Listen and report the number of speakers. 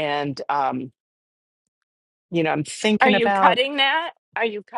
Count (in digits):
2